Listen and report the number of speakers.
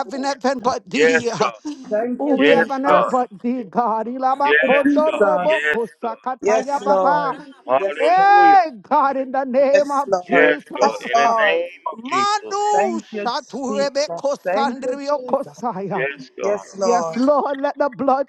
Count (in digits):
3